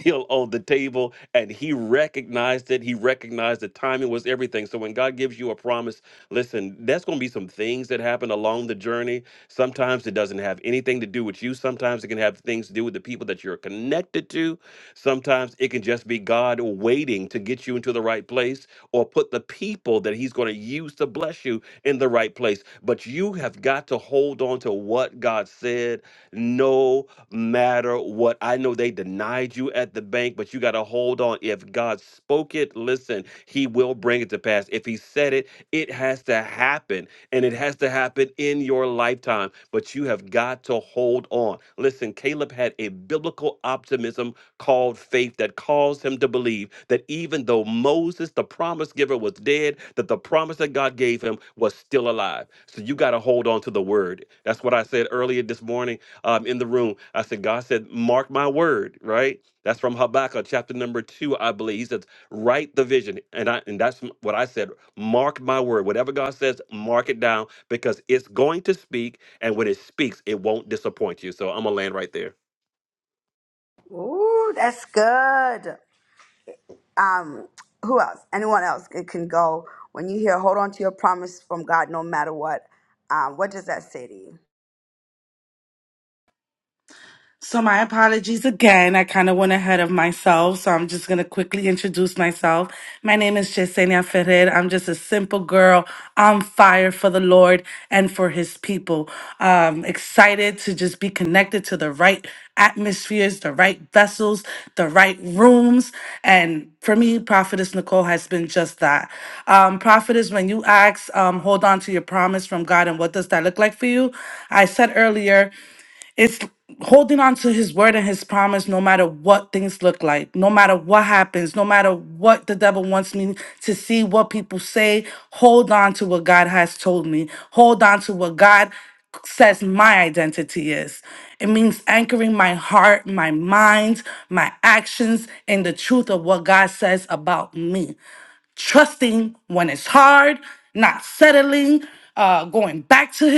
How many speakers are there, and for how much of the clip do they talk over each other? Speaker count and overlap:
3, no overlap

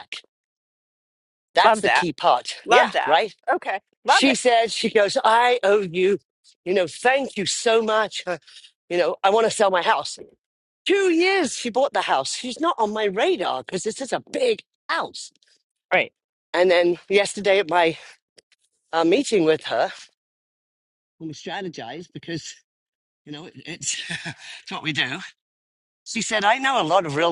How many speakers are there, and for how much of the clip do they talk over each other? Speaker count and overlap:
2, about 4%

